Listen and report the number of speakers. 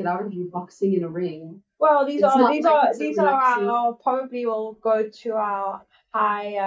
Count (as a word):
two